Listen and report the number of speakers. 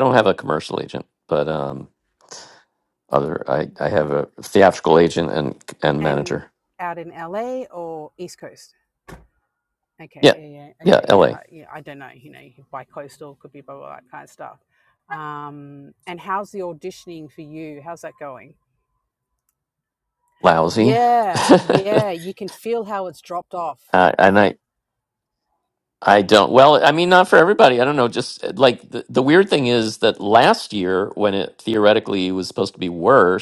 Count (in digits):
2